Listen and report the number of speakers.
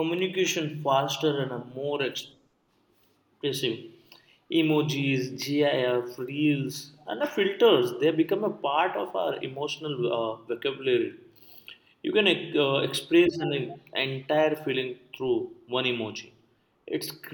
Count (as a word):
one